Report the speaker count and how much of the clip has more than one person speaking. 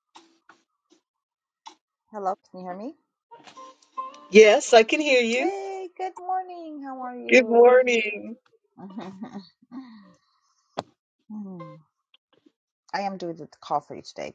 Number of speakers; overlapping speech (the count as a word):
two, about 4%